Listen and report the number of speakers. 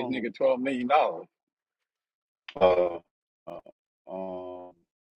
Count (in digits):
2